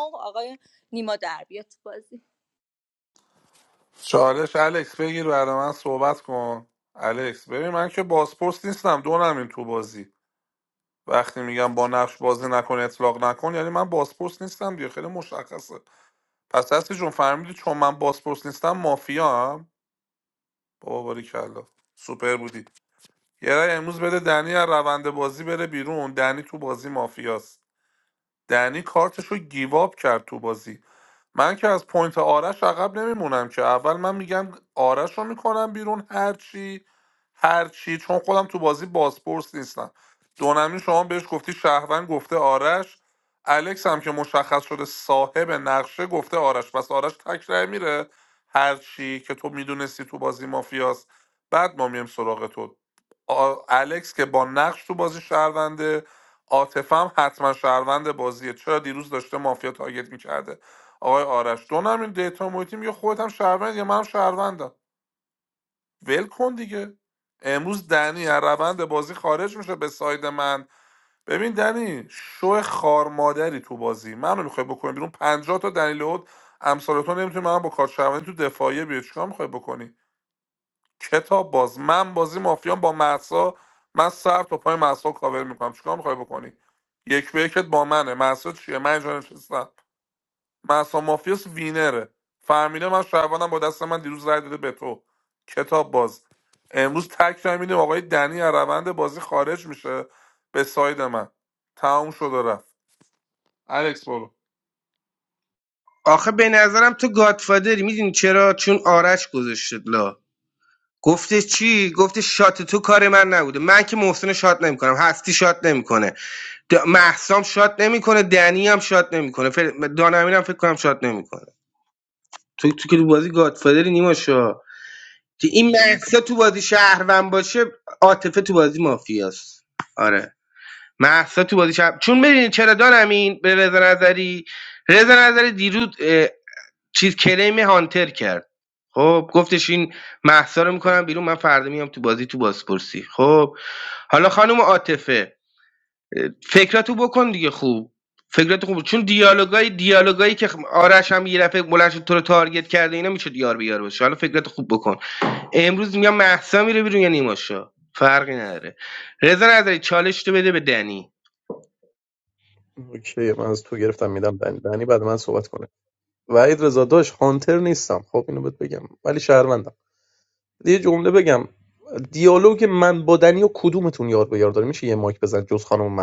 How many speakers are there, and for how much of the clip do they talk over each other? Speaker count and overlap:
4, no overlap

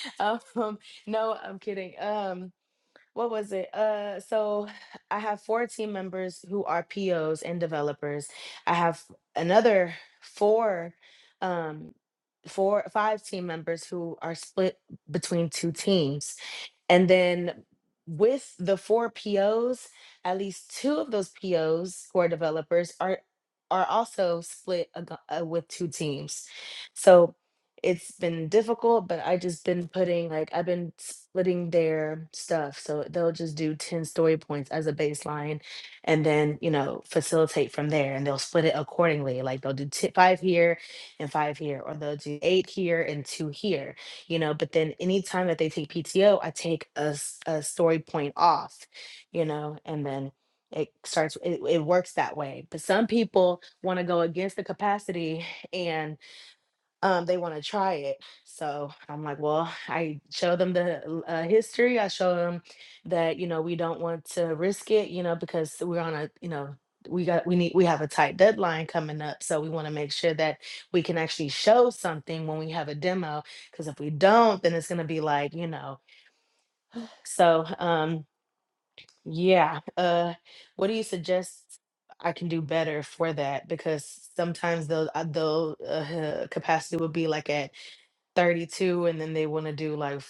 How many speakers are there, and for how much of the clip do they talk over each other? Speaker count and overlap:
1, no overlap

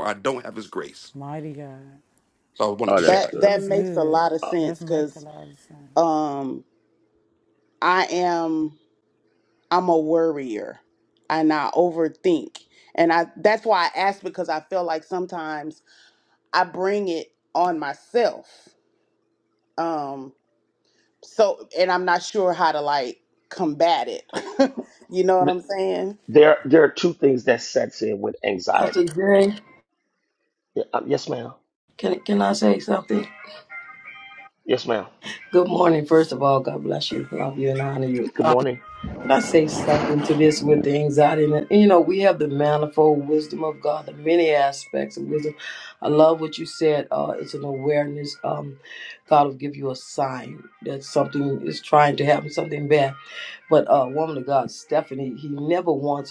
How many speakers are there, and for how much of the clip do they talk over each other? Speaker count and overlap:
5, about 5%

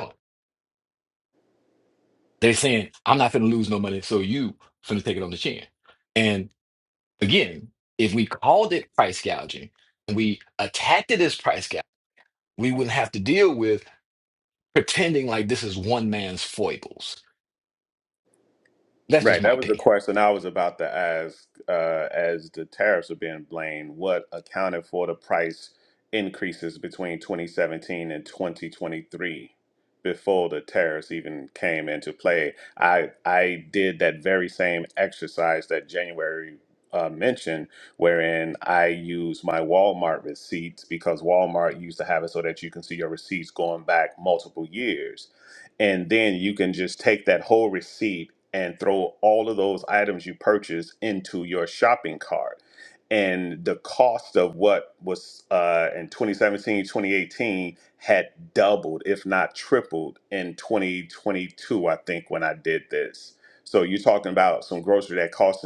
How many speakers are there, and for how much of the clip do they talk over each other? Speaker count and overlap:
2, about 1%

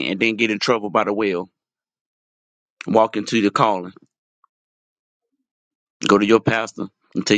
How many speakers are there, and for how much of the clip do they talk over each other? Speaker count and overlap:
1, no overlap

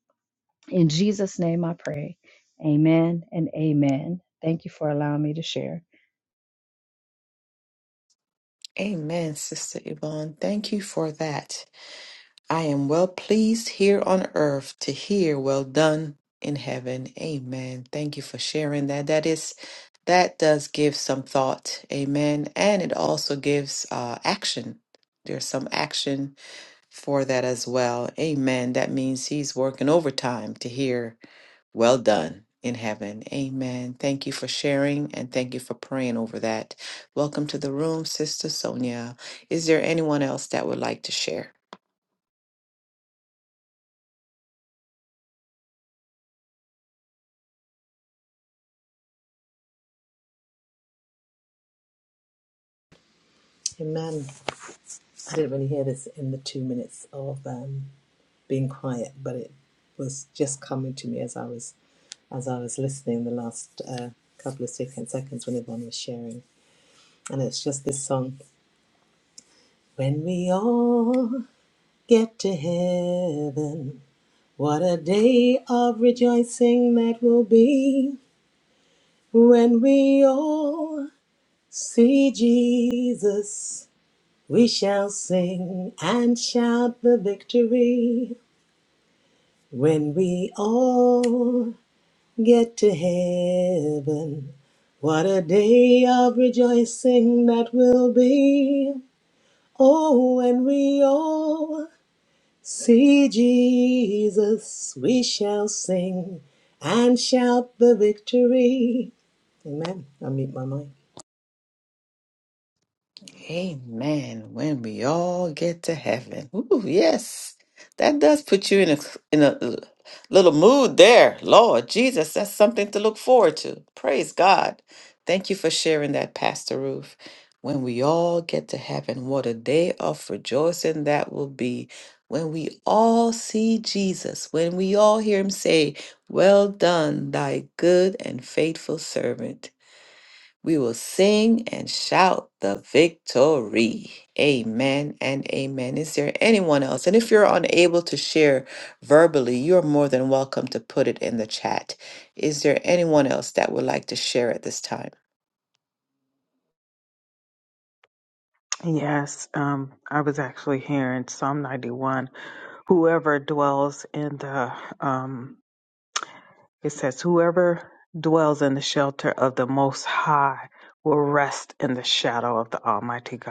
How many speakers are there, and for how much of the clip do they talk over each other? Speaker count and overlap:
4, no overlap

